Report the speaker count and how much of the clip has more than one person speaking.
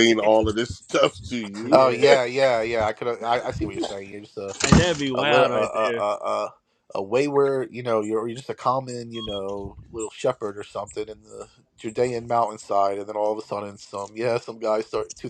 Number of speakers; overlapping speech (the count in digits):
3, about 8%